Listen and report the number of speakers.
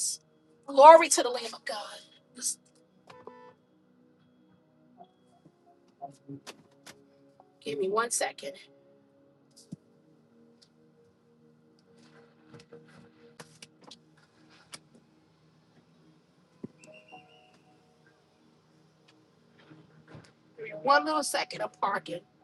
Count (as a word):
one